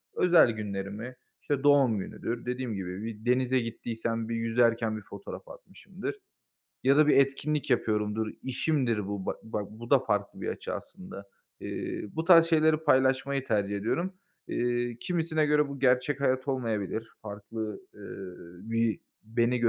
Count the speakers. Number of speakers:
1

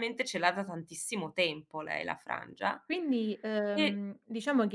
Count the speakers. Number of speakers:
2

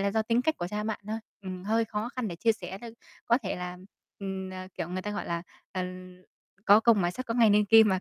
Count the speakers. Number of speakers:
1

